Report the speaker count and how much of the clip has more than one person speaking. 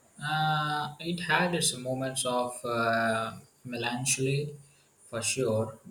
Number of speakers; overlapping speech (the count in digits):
1, no overlap